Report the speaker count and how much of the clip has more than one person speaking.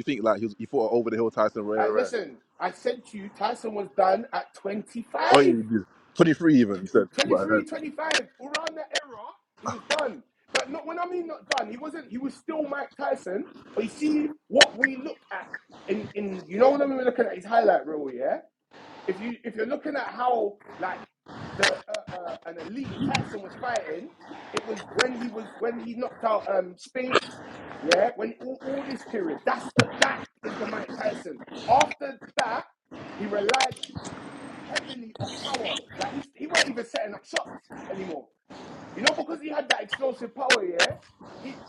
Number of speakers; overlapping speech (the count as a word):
two, about 3%